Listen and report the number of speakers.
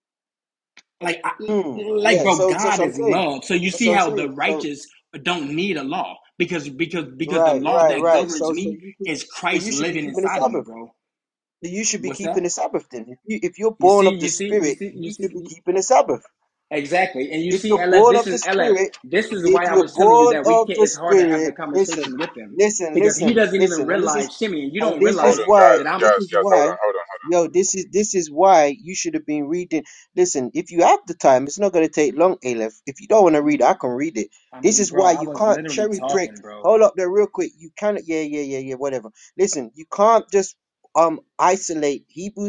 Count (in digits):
3